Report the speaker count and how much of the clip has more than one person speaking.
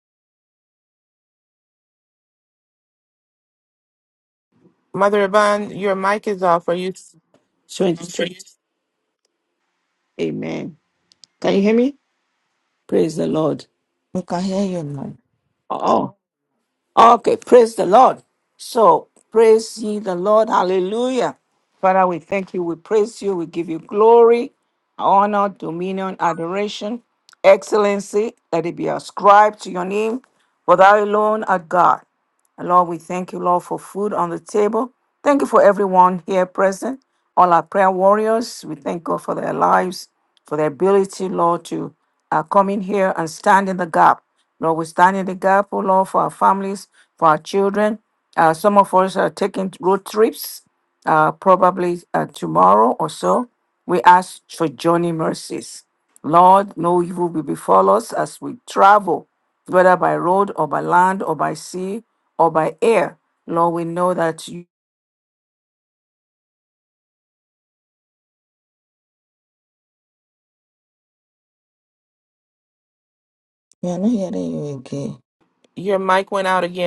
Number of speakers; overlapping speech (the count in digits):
3, no overlap